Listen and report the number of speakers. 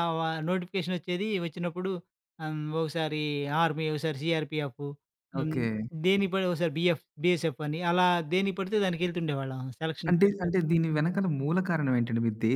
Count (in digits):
2